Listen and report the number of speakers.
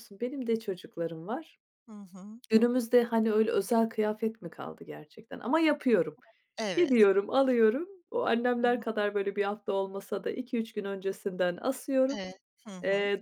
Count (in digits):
2